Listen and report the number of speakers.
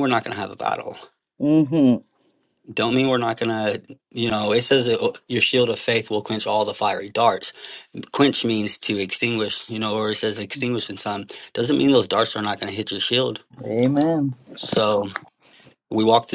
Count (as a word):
two